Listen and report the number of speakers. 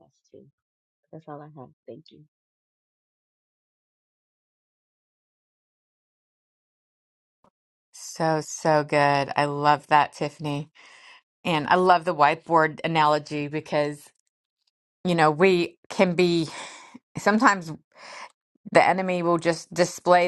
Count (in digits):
2